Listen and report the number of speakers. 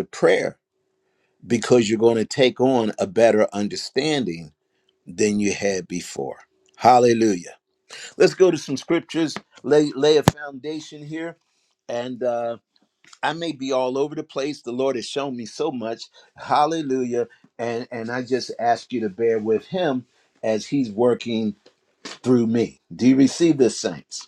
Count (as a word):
one